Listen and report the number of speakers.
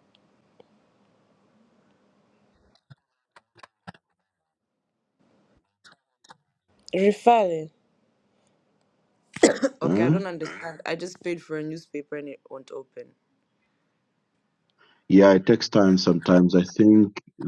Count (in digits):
2